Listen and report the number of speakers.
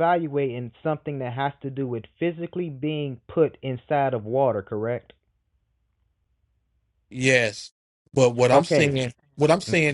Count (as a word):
two